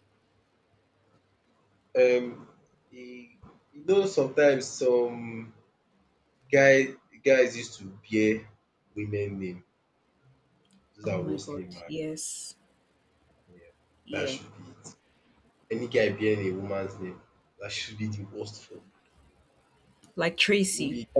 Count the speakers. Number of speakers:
2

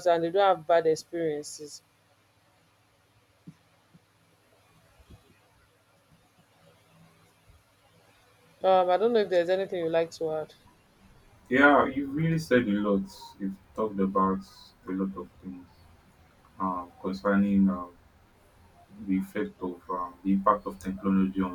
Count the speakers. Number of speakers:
2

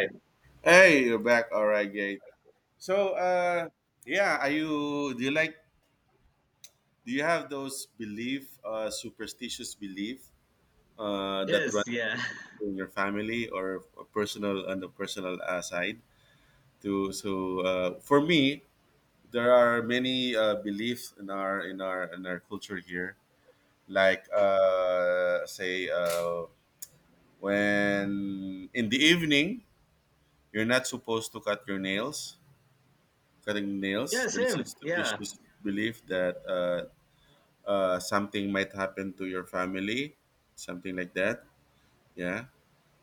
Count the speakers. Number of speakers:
2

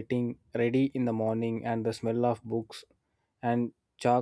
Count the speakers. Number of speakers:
1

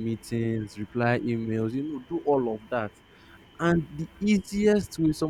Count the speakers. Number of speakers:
1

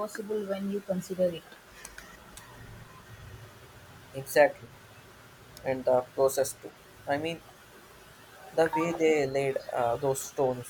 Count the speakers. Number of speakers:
2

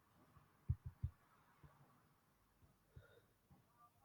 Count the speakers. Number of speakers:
0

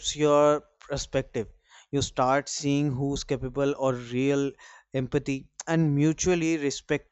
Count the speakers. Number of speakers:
1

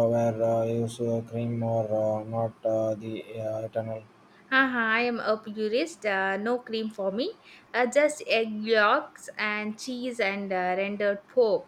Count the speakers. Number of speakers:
2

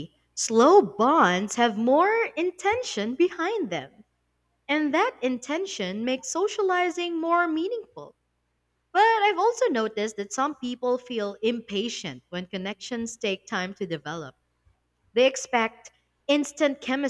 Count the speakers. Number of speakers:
1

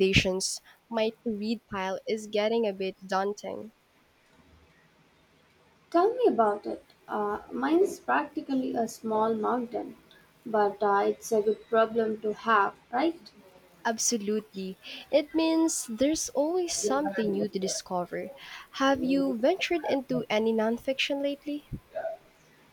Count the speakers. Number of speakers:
2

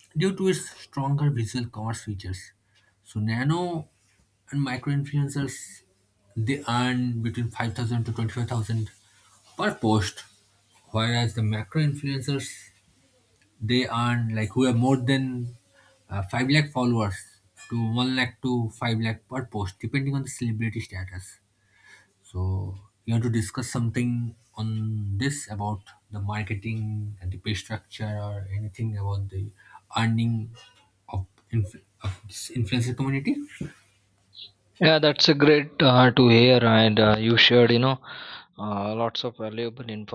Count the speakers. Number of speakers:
2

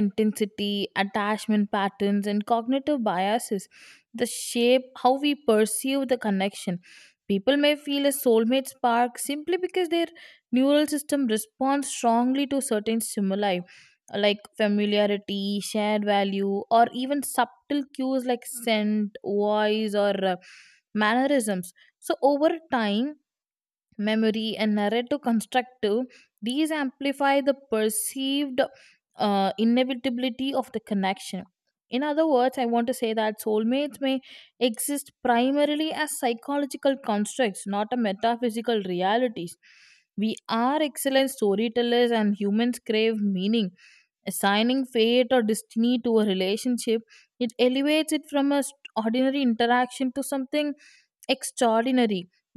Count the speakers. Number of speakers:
1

